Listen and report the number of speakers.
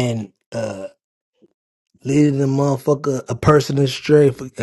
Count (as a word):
one